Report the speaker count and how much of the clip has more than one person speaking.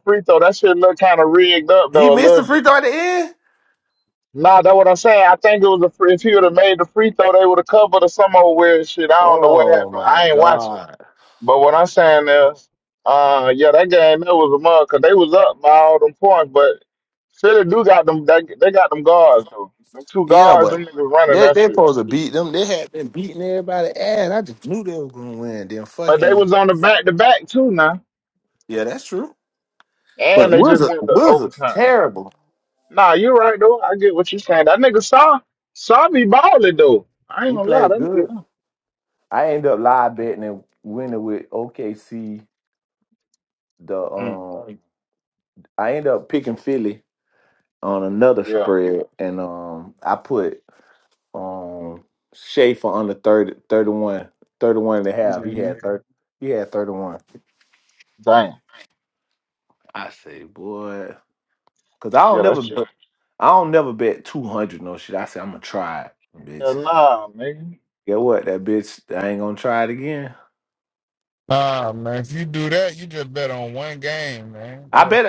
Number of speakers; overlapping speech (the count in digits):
2, about 9%